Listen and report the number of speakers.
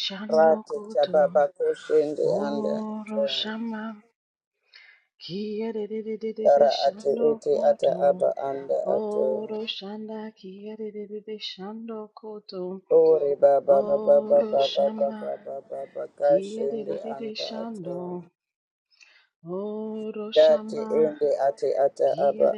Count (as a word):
two